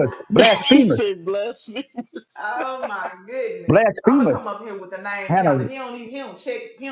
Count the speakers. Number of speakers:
three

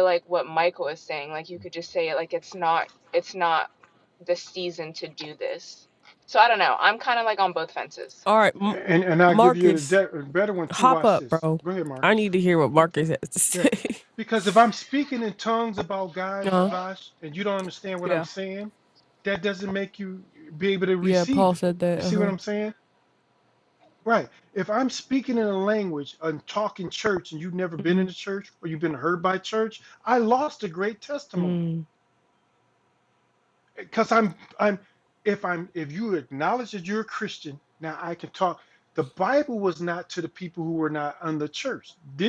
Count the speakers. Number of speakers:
three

